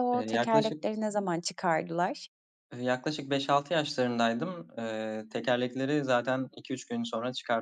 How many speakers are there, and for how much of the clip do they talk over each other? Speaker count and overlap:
2, about 9%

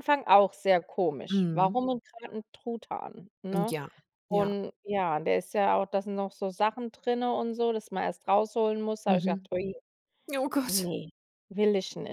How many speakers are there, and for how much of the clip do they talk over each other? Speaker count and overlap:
2, about 12%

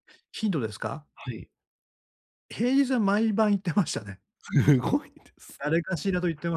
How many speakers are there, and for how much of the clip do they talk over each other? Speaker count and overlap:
2, no overlap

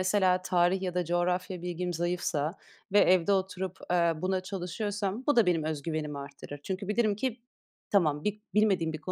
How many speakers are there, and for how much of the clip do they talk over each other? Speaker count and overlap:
1, no overlap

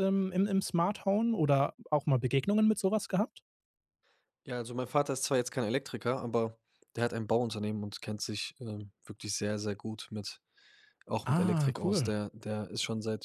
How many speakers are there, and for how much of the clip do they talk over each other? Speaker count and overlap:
2, about 6%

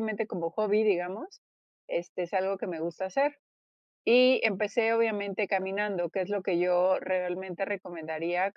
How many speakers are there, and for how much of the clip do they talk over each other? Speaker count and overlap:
1, no overlap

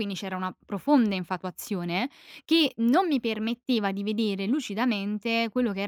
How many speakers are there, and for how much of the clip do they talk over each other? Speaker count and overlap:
1, no overlap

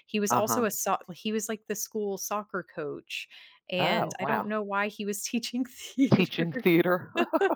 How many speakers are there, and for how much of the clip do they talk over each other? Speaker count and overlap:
2, about 19%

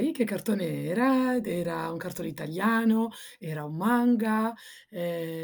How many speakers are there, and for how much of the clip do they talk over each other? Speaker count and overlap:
1, no overlap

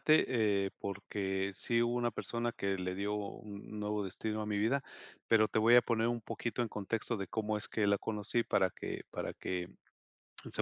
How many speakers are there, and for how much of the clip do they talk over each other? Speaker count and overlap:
1, no overlap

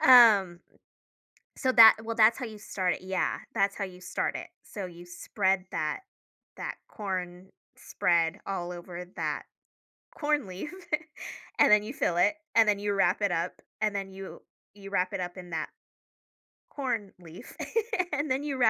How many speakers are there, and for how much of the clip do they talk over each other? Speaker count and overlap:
1, no overlap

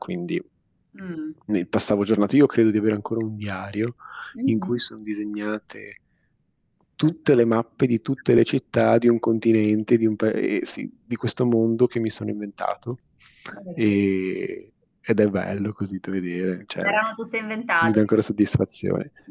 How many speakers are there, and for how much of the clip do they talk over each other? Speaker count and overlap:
2, about 5%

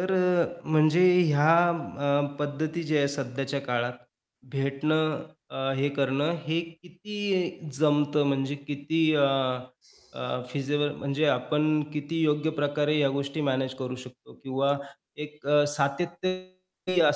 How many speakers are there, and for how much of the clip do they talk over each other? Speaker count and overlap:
1, no overlap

